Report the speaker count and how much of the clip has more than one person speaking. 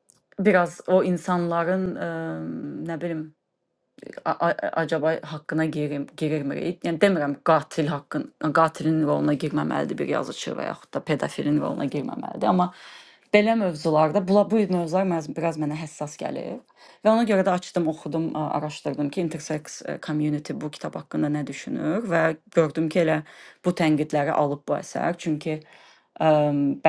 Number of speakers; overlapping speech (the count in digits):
1, no overlap